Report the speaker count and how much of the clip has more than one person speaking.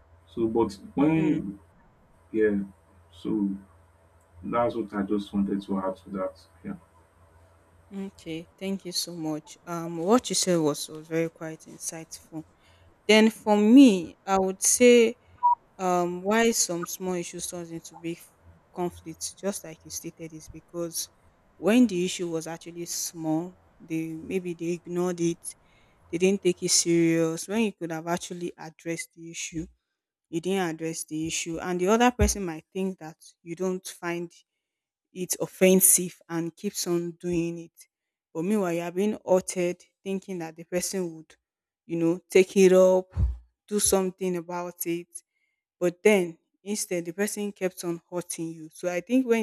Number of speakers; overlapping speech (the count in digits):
2, about 1%